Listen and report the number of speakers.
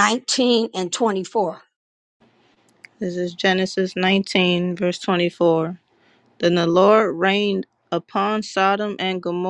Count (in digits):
2